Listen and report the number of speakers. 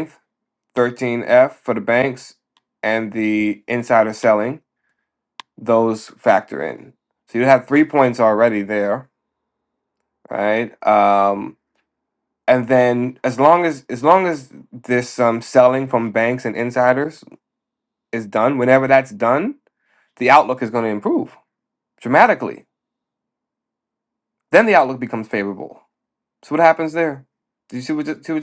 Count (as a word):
one